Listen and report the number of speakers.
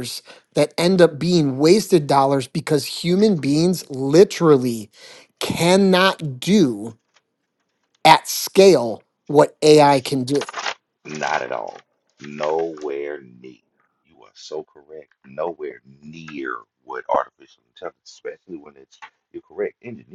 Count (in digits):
2